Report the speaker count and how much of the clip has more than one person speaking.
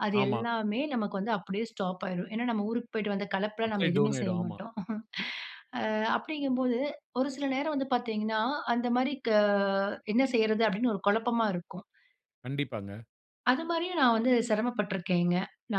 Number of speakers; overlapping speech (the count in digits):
2, about 8%